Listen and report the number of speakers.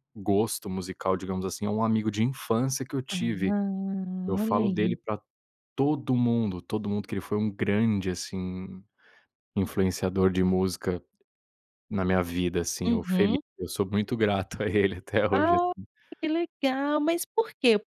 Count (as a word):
two